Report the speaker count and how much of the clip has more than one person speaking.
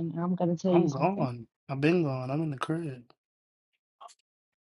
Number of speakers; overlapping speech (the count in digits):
2, about 13%